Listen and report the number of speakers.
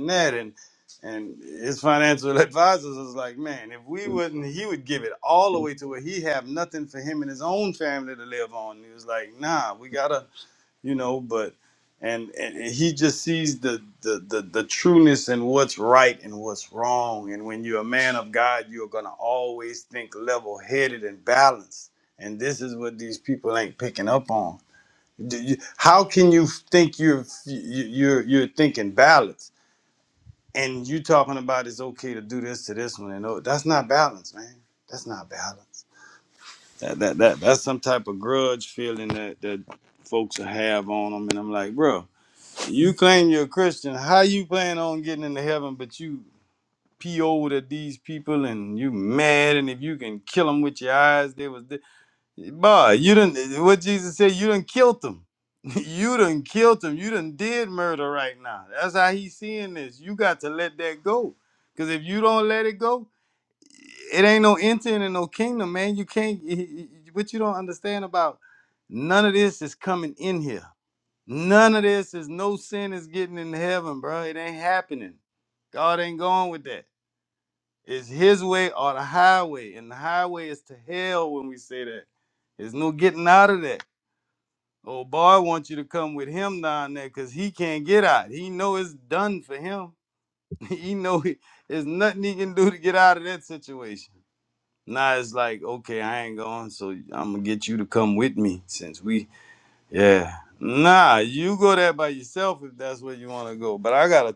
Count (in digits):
1